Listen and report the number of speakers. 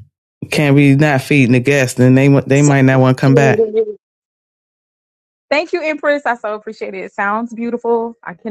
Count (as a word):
two